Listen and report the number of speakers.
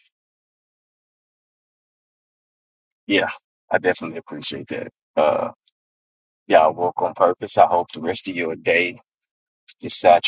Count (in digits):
1